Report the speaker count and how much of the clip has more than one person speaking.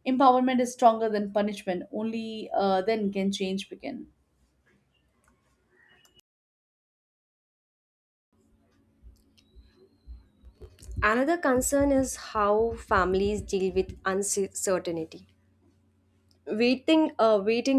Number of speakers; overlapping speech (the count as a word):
two, no overlap